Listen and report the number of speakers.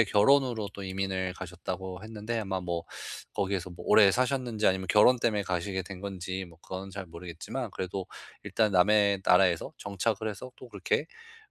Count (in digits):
1